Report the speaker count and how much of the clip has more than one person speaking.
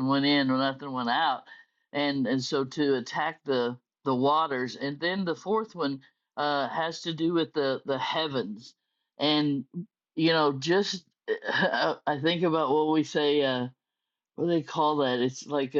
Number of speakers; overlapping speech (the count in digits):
1, no overlap